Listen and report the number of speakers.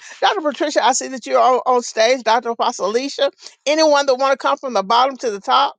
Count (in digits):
1